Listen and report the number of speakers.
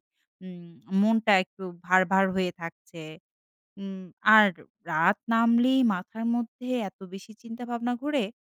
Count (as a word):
one